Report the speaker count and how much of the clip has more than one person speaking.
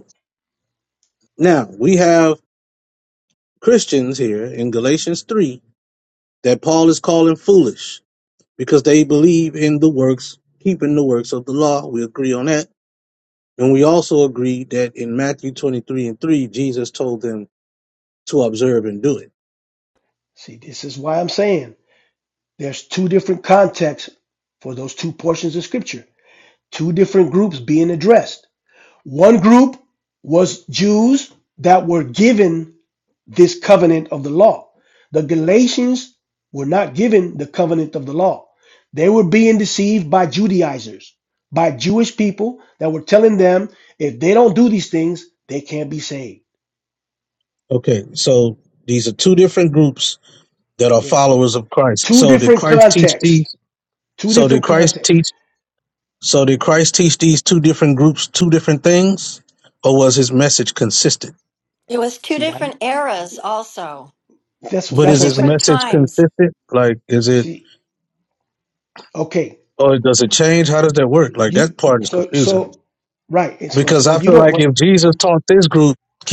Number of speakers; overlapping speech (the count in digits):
3, about 7%